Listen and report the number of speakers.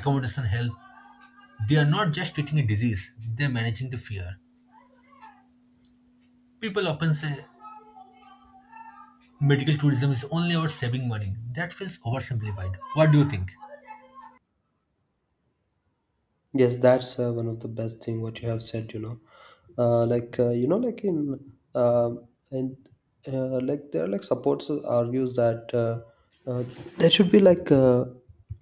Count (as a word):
two